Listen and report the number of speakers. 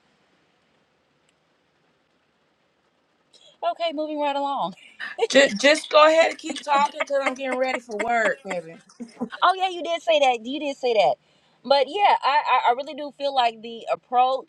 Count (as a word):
two